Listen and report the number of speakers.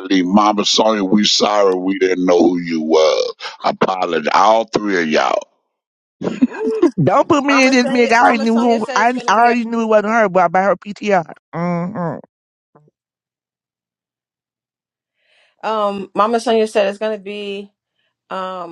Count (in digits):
3